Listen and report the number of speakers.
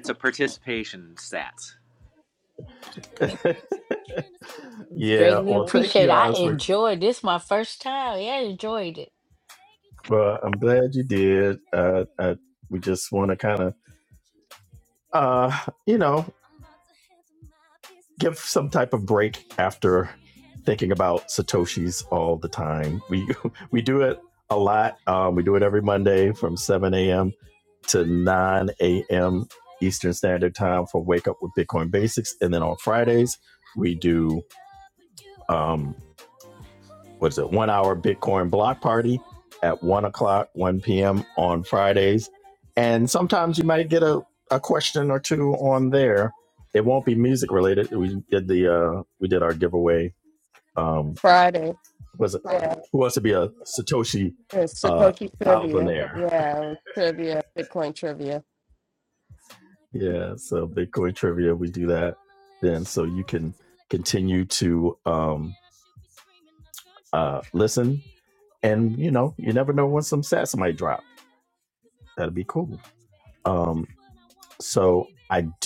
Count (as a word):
four